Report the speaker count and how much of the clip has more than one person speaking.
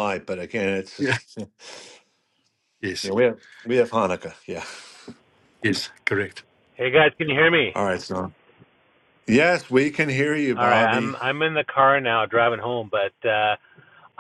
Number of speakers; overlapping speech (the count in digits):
3, about 6%